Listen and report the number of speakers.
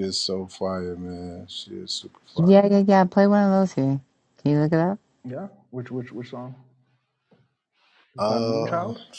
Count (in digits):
3